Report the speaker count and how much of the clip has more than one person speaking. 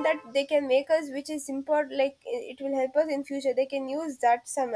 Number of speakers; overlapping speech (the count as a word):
one, no overlap